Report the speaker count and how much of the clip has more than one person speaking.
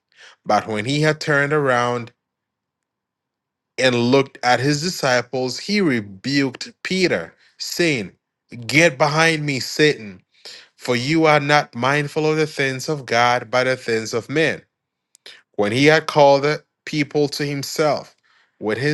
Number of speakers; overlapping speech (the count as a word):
one, no overlap